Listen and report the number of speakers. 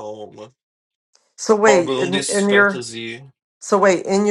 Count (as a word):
two